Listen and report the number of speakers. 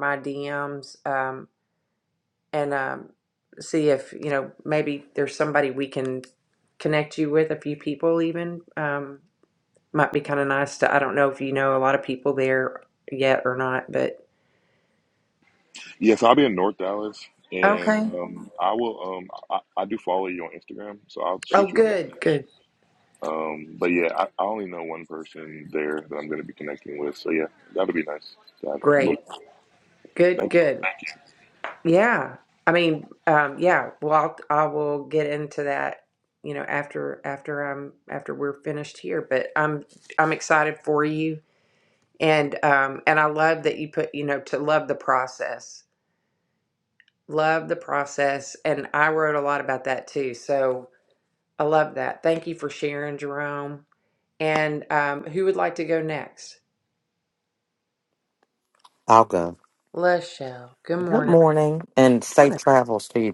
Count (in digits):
3